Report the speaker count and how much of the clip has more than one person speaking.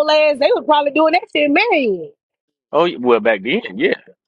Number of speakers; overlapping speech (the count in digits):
2, no overlap